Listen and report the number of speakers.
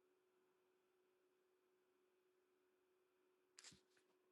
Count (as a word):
zero